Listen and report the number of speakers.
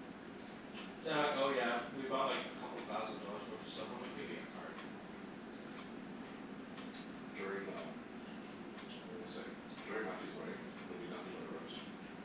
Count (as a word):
two